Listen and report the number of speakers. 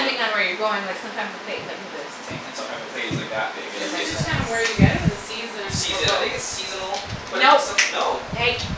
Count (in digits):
3